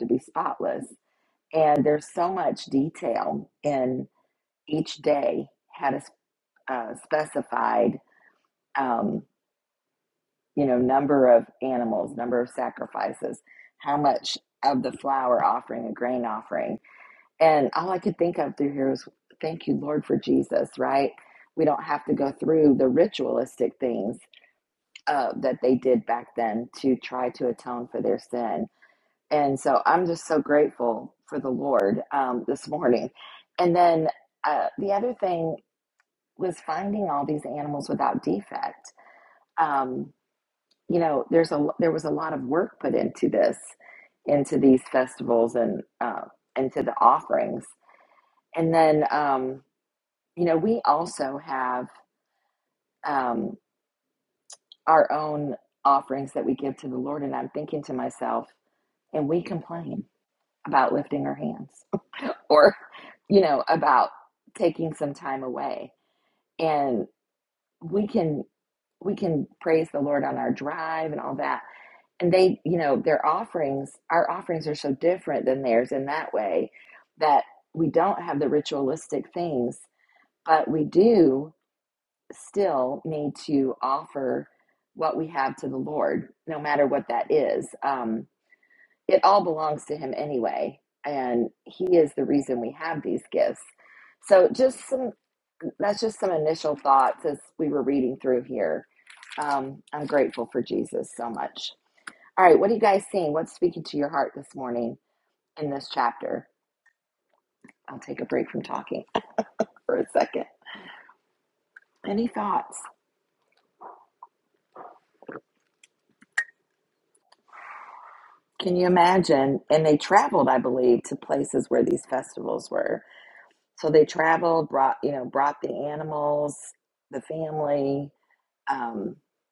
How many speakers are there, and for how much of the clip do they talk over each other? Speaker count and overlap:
one, no overlap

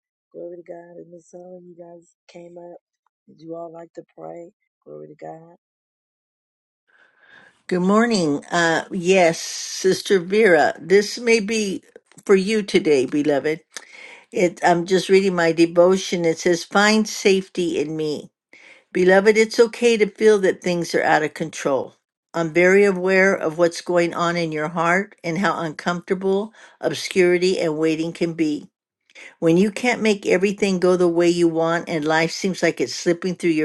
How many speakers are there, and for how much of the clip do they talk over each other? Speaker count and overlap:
two, no overlap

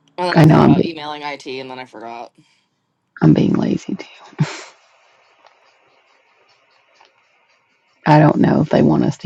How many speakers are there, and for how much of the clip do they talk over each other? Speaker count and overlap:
two, about 6%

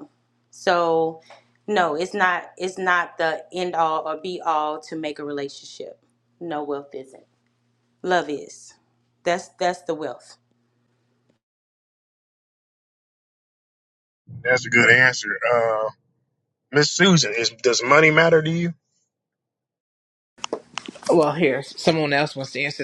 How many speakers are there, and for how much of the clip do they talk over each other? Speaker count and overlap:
three, no overlap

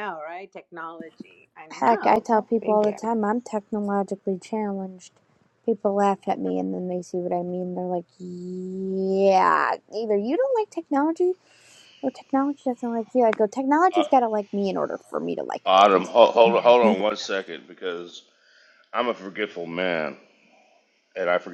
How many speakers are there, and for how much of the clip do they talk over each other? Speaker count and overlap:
three, about 8%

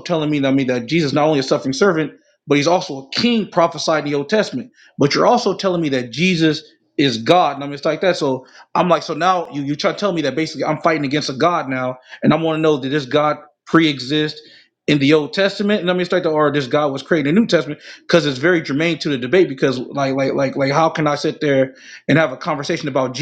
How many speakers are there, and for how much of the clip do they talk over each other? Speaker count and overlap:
one, no overlap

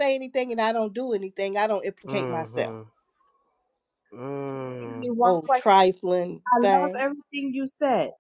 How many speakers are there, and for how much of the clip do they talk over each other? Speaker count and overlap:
three, about 19%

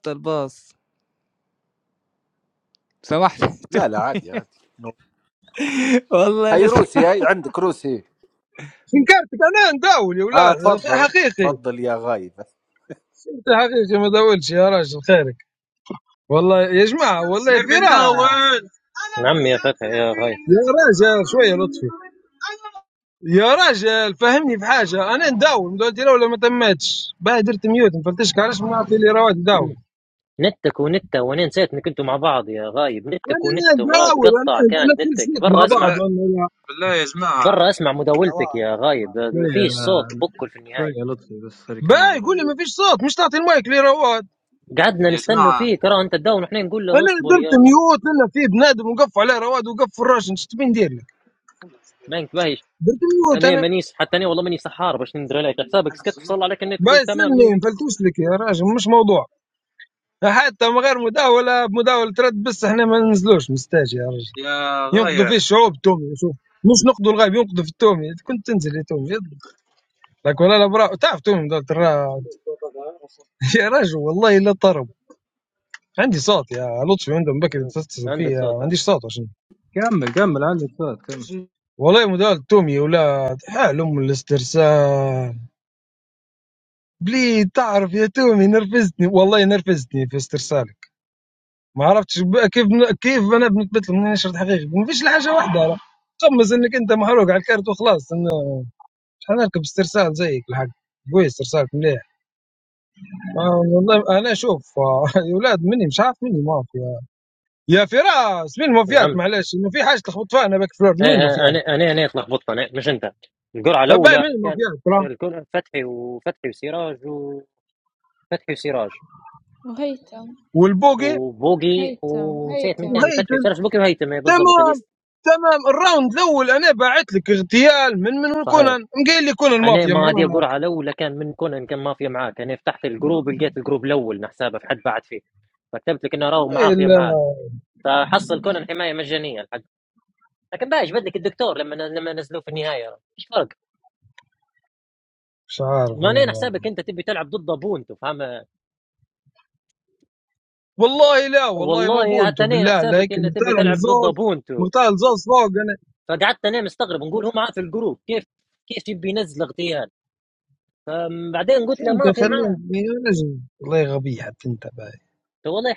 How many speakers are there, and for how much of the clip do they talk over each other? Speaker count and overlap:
seven, about 12%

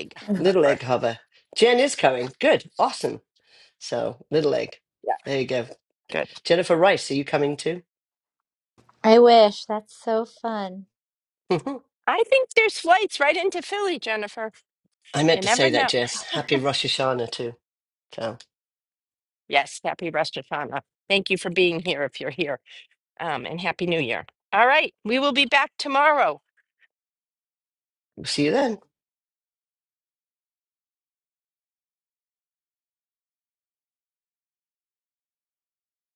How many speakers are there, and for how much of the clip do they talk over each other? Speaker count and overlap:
three, about 3%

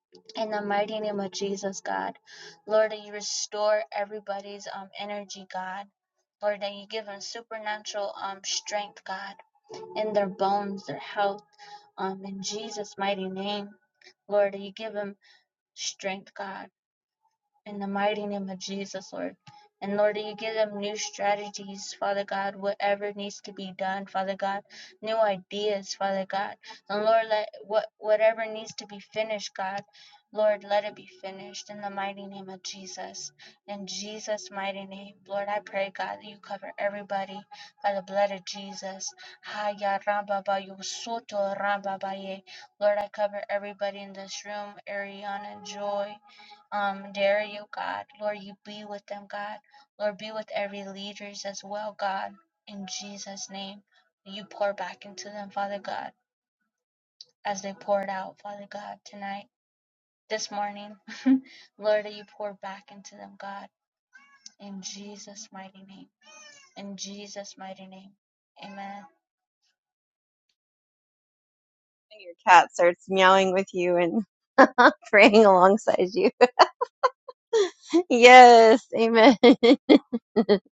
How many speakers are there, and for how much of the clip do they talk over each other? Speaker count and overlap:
two, no overlap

